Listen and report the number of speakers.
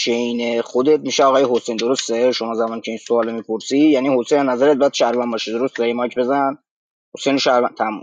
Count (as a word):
one